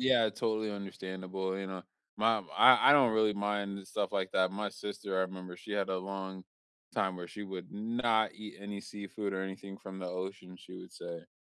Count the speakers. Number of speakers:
1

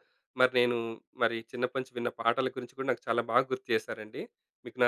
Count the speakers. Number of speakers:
1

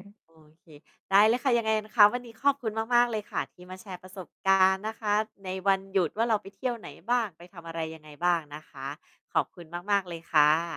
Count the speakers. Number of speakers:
1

